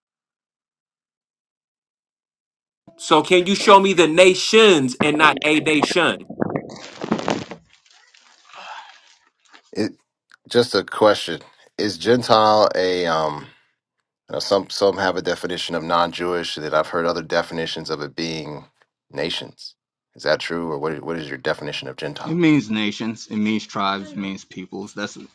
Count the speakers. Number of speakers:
three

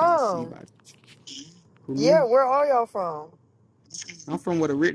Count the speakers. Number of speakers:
two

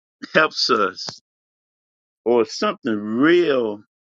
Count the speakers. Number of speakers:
one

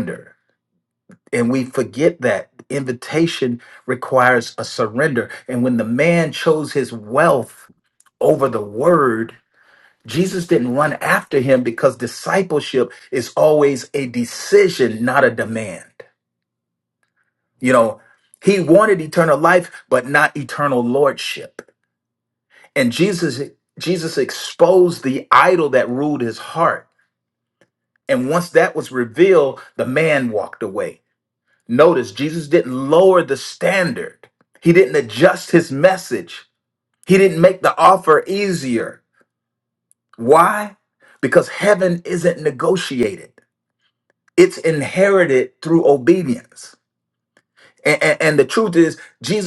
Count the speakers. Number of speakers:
one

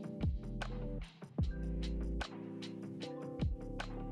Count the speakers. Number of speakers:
zero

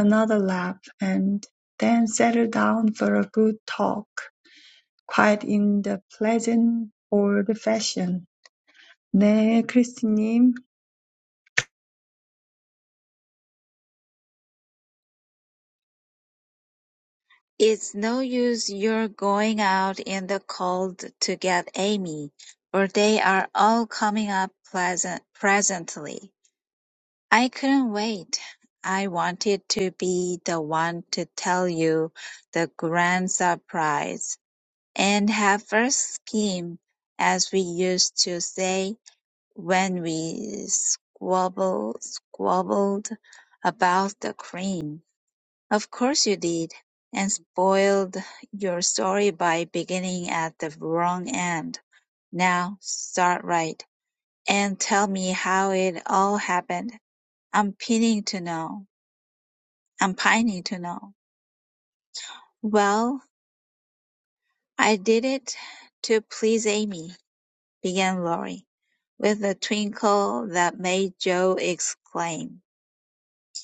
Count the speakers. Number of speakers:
two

